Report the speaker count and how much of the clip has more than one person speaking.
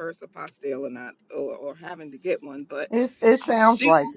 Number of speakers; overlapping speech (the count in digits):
2, about 15%